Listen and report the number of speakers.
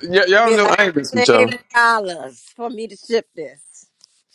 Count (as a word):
two